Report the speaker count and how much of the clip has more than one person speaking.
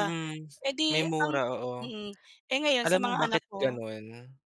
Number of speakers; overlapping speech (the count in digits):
2, about 35%